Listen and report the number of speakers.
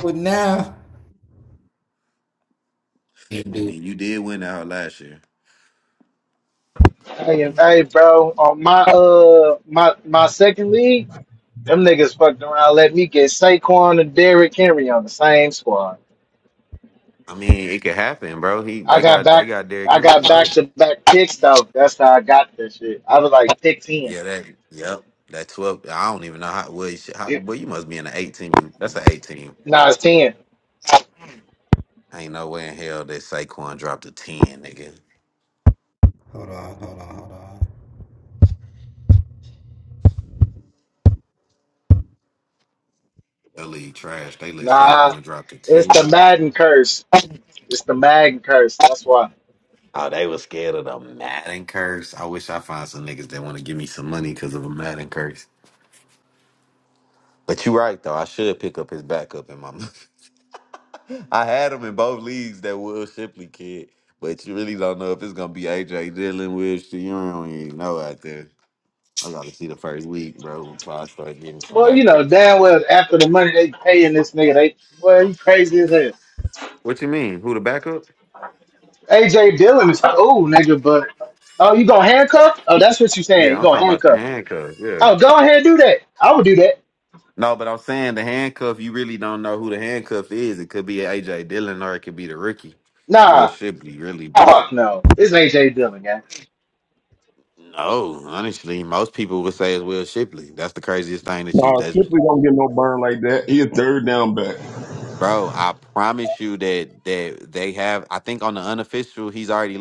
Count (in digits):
4